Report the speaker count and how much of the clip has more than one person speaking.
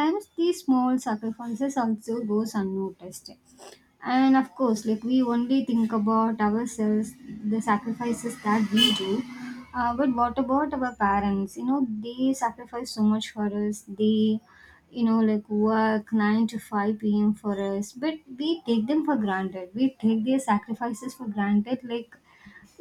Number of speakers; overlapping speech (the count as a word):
one, no overlap